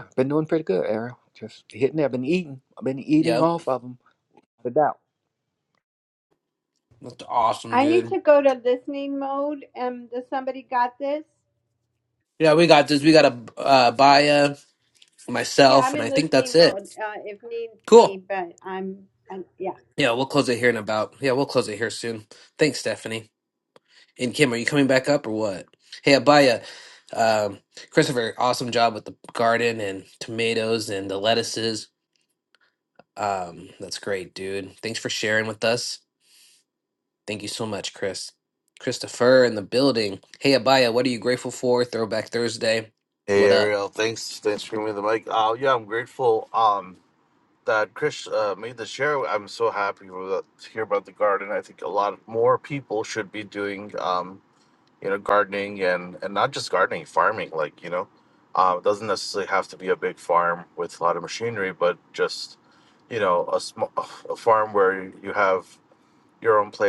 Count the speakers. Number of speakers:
four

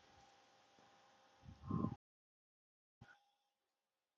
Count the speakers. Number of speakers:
zero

